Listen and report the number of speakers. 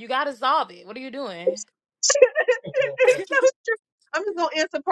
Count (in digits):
2